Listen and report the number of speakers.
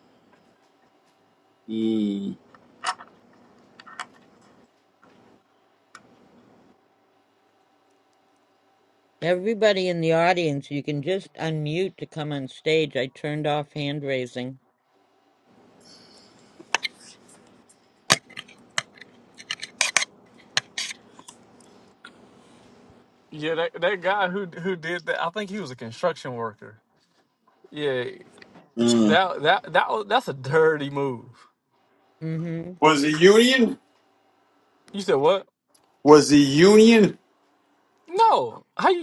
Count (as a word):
four